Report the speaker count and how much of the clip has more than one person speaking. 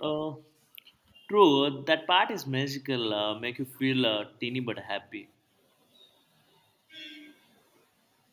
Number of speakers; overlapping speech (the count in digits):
1, no overlap